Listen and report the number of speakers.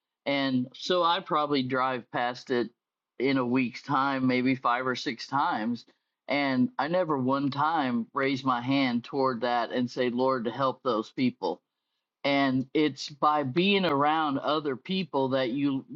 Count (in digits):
1